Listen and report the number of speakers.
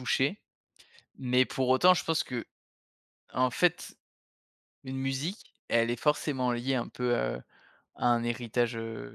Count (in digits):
1